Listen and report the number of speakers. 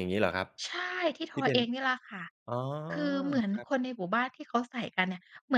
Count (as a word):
two